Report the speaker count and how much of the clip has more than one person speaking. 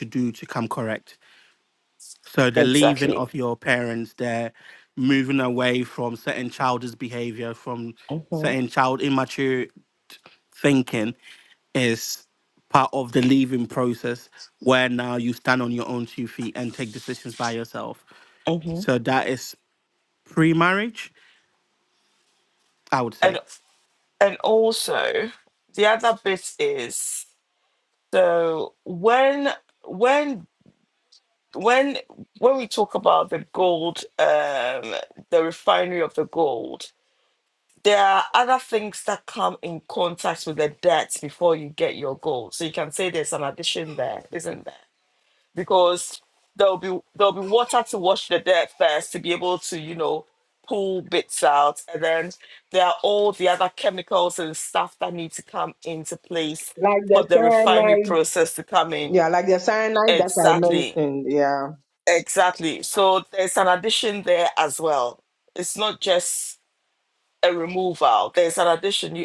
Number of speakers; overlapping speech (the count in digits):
3, about 4%